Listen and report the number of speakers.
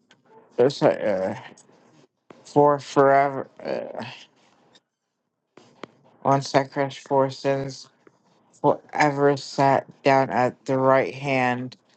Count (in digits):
1